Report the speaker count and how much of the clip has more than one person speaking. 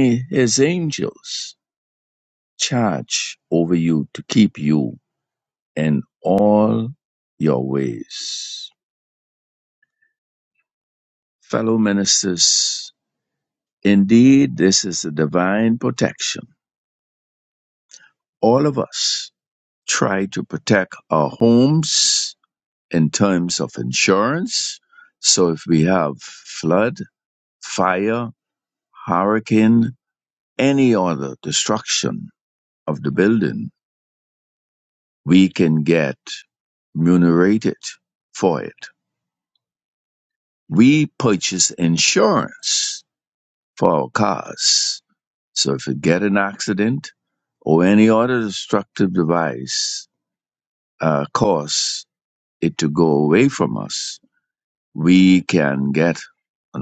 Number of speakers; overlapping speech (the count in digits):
1, no overlap